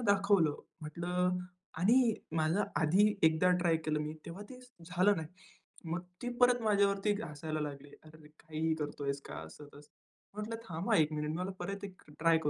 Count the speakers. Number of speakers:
1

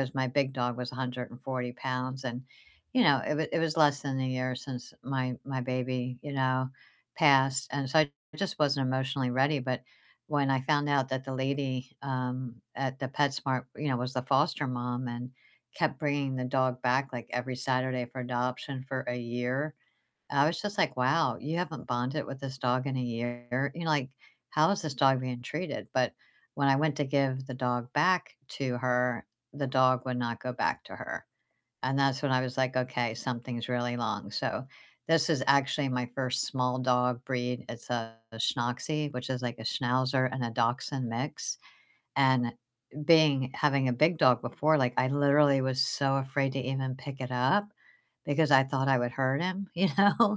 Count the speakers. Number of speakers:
1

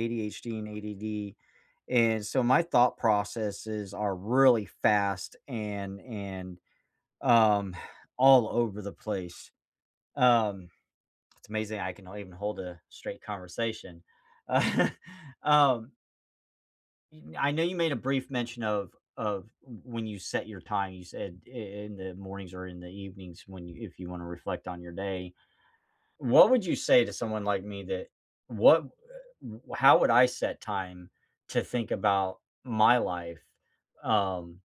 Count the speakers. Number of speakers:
1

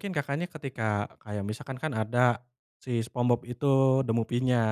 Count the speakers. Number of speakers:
1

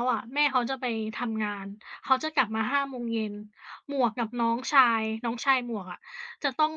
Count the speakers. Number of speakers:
1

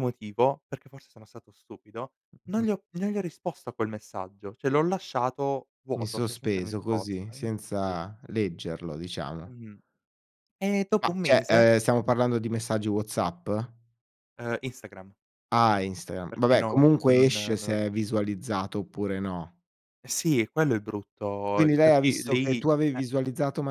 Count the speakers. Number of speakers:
2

